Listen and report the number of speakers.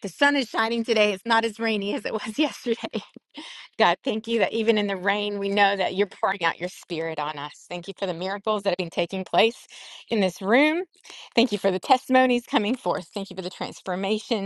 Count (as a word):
one